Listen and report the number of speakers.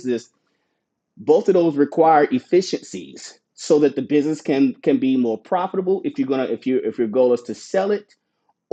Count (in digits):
1